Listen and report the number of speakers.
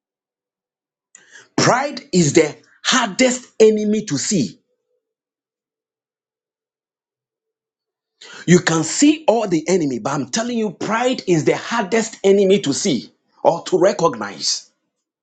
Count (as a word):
one